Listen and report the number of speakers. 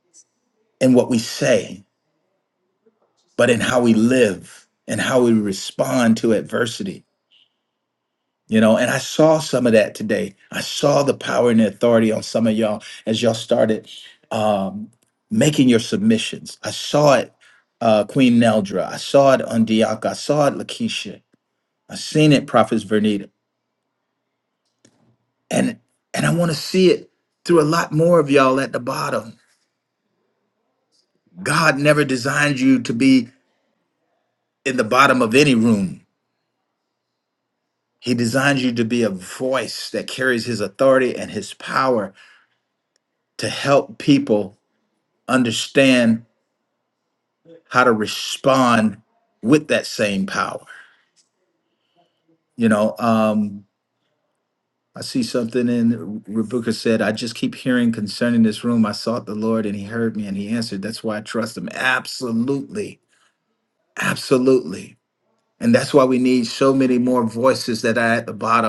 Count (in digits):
1